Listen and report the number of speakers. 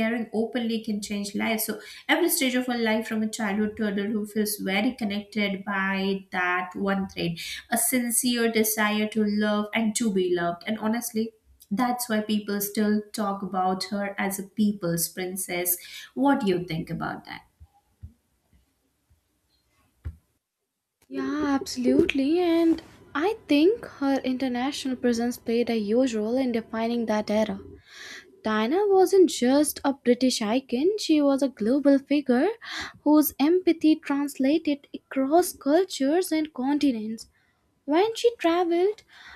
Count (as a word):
two